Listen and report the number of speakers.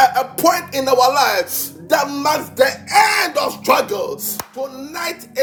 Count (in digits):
1